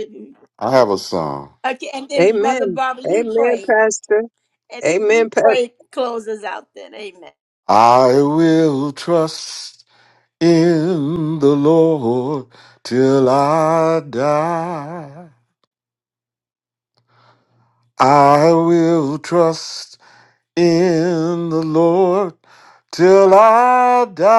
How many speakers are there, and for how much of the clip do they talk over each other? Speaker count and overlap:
three, about 9%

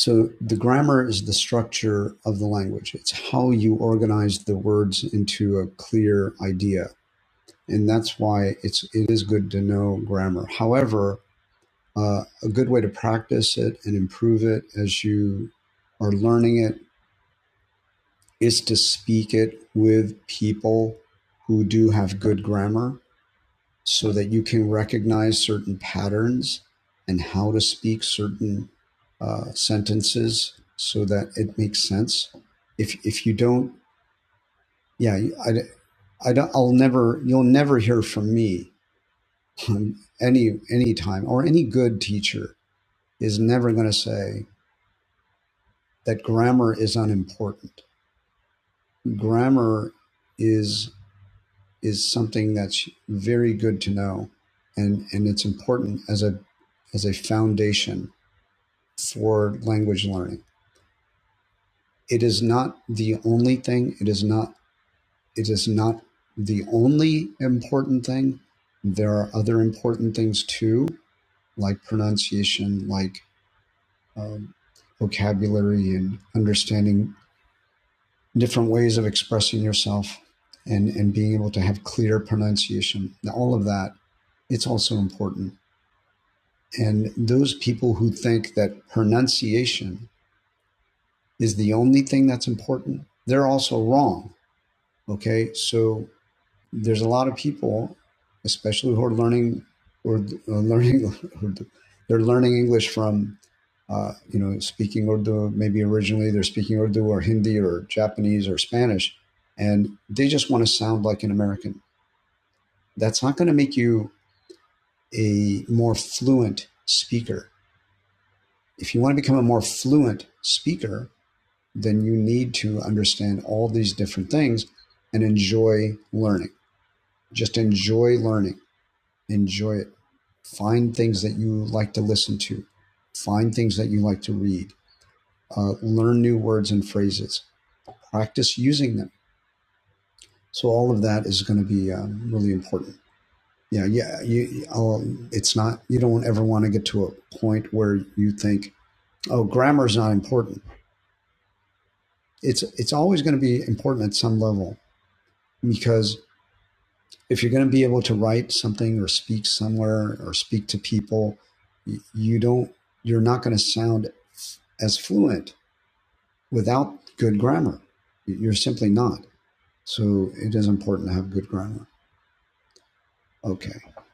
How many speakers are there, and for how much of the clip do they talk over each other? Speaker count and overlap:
one, no overlap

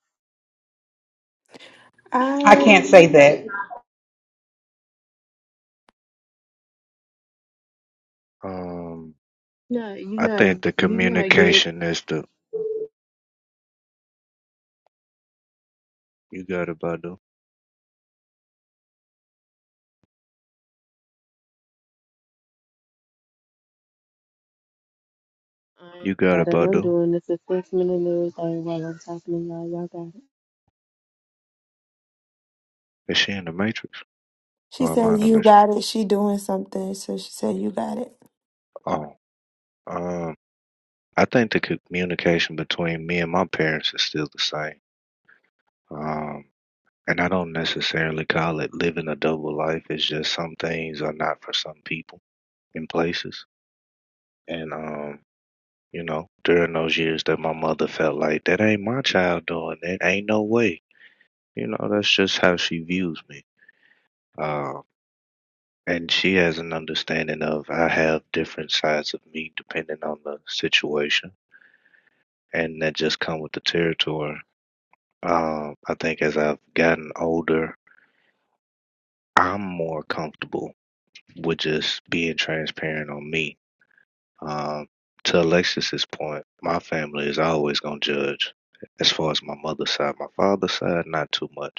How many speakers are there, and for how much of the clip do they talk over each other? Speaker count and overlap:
four, about 3%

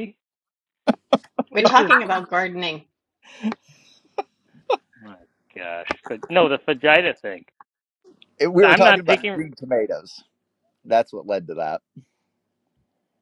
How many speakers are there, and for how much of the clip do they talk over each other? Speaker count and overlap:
three, about 8%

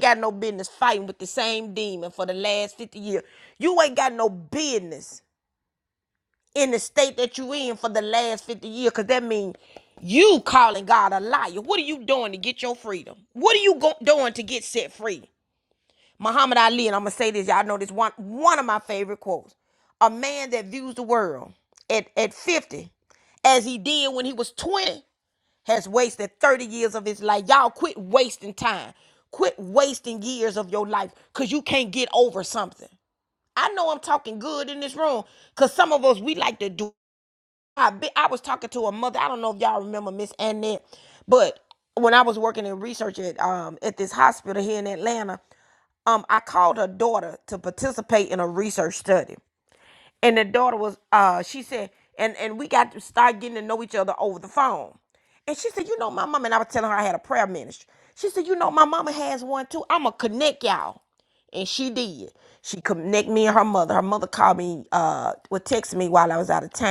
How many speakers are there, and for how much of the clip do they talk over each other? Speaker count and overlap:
one, no overlap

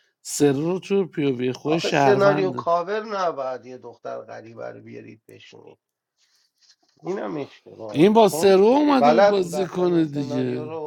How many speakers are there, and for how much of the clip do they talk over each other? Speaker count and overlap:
two, about 34%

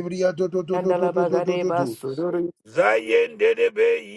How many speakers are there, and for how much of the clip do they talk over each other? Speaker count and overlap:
three, about 24%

